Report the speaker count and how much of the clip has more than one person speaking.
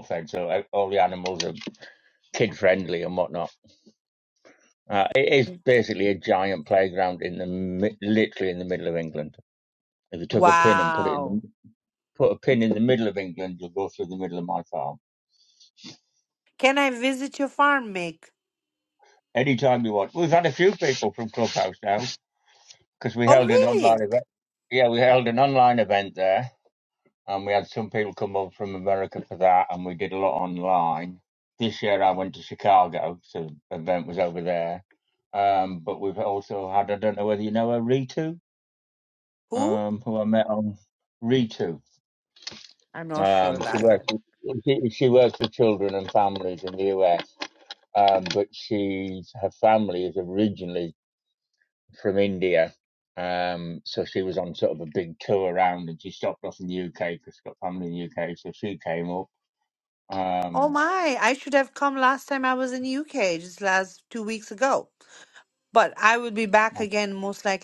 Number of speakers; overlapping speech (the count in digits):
2, about 4%